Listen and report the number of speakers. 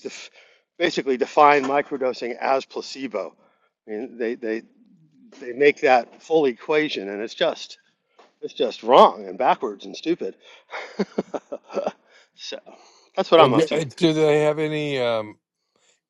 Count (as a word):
two